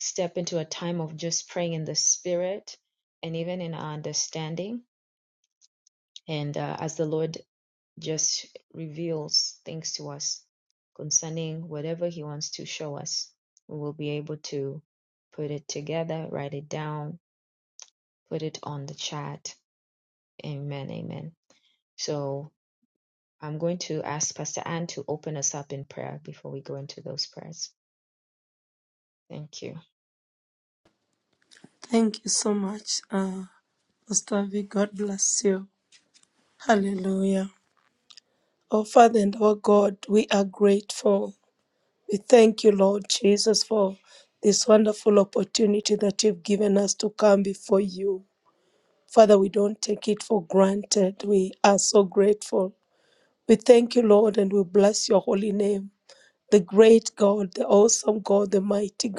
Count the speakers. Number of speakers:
2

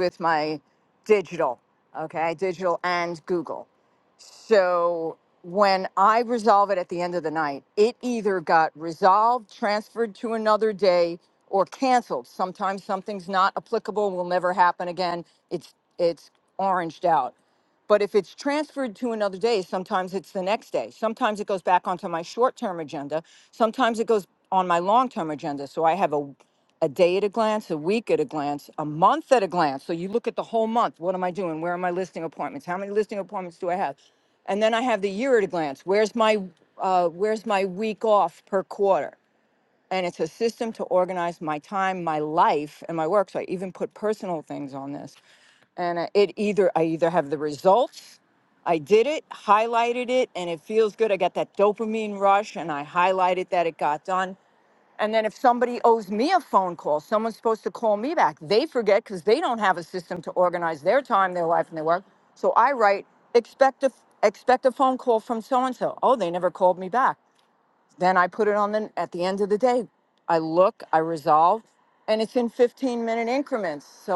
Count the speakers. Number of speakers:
1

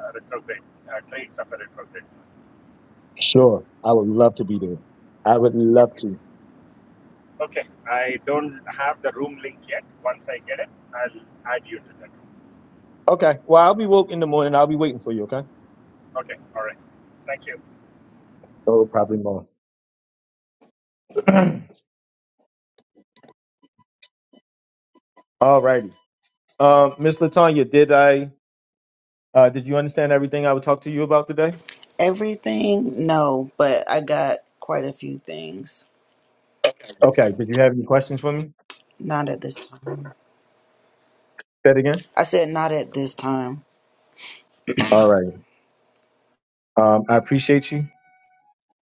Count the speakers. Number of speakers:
3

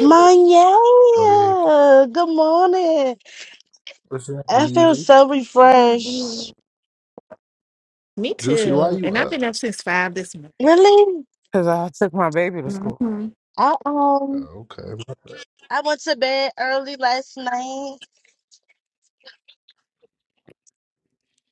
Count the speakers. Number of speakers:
4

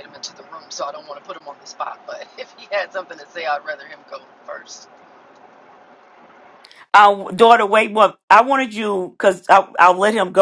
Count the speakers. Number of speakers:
2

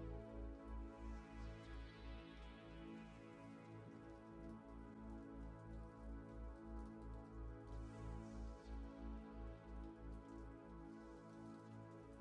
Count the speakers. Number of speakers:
0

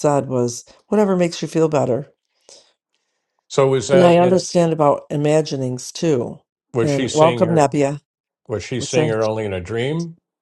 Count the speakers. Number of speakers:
2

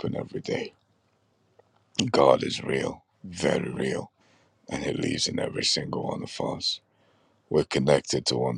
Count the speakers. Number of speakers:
1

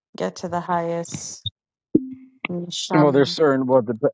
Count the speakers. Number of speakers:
2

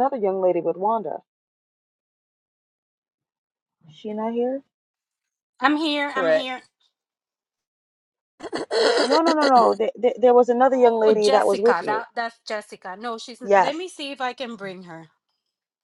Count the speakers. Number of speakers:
3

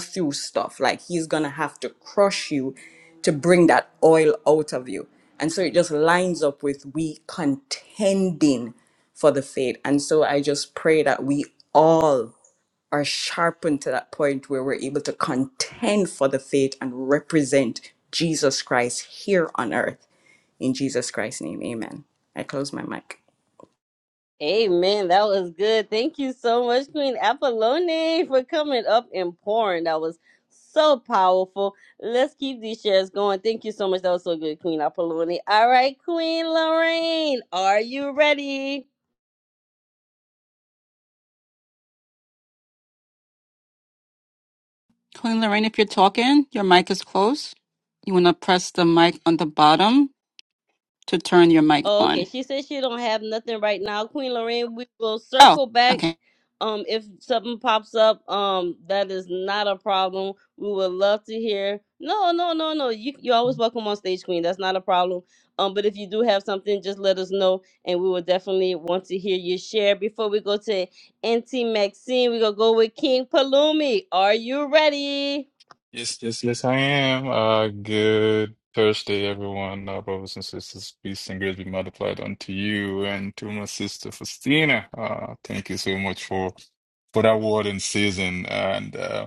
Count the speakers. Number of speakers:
4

